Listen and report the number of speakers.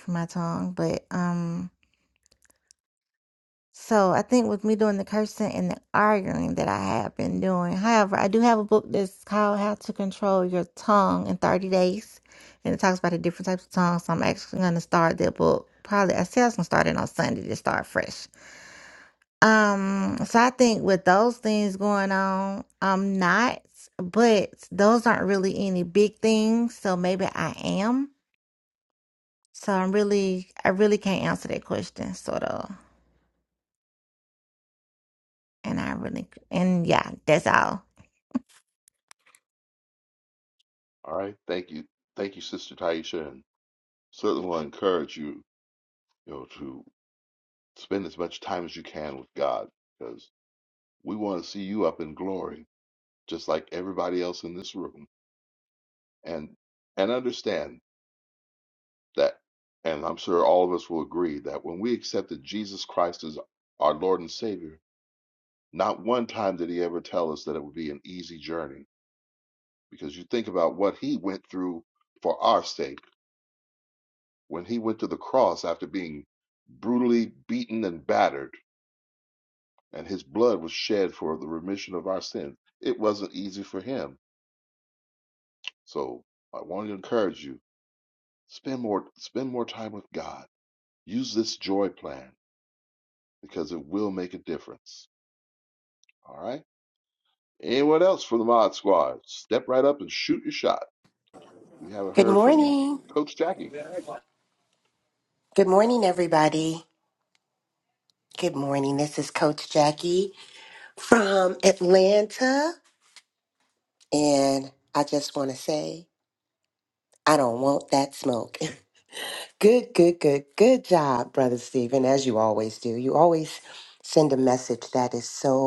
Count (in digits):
3